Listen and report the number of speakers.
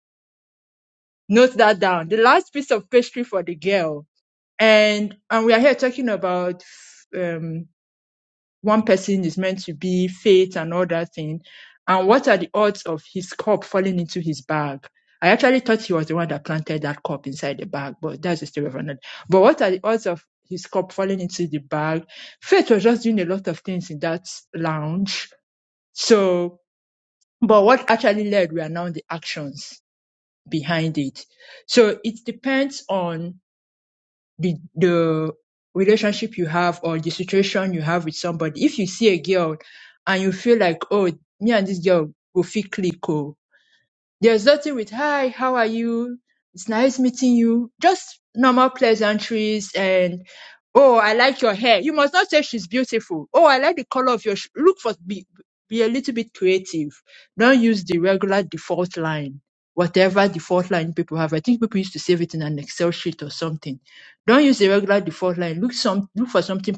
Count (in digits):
1